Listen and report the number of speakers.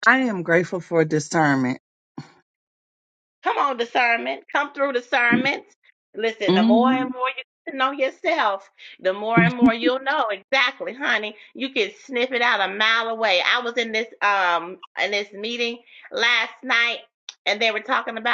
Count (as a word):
two